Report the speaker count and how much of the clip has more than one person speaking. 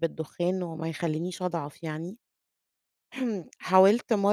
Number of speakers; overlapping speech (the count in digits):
1, no overlap